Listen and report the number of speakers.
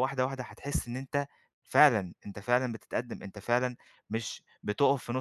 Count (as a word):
one